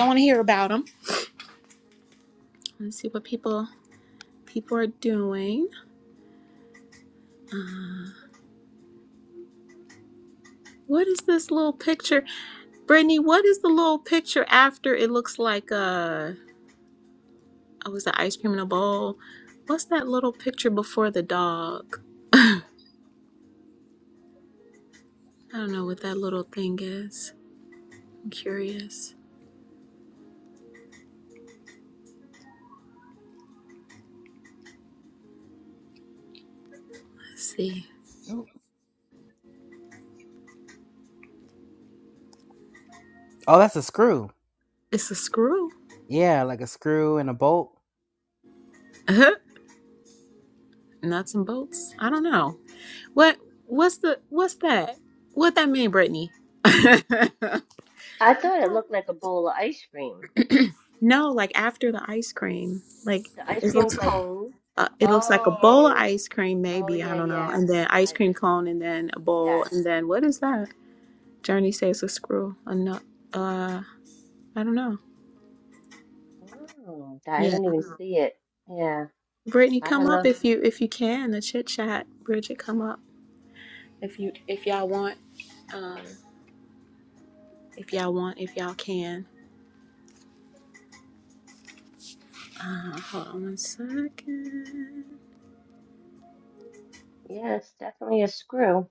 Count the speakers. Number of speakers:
three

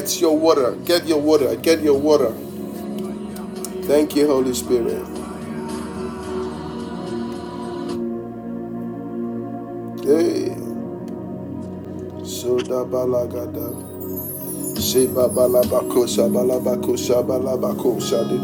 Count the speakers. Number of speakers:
one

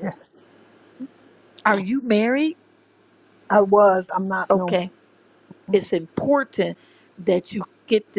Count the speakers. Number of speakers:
two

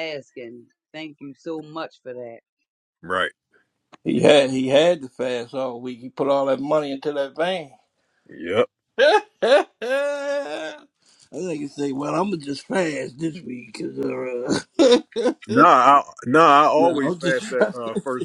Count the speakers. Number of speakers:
three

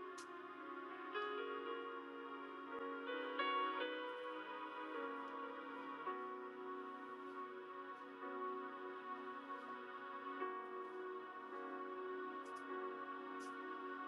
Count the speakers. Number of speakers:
zero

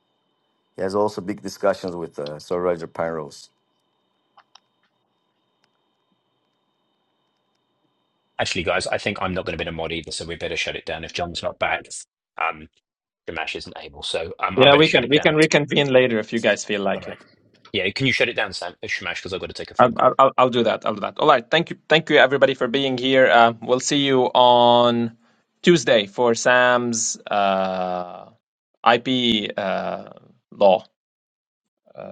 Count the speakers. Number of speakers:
three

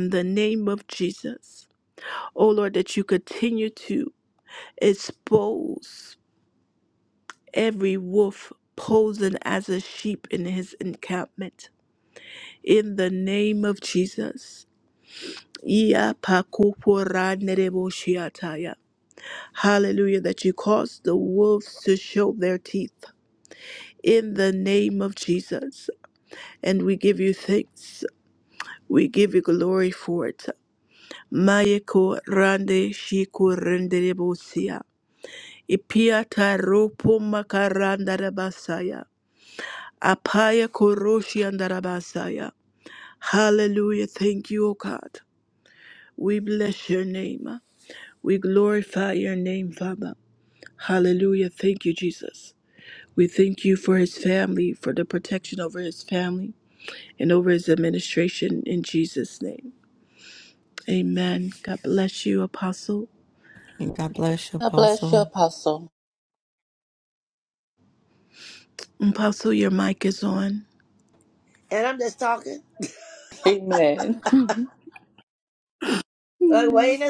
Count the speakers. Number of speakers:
four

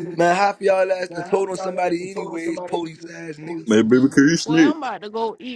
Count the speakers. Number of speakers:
three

